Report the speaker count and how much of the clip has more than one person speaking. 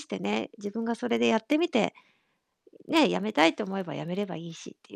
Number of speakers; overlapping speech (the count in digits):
1, no overlap